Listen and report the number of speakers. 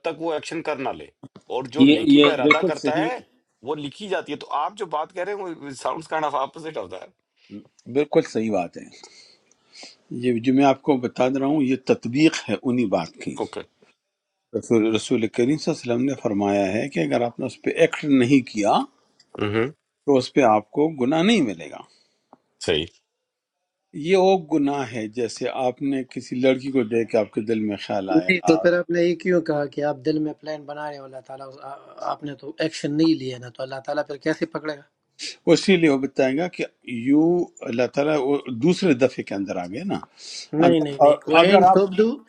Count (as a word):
three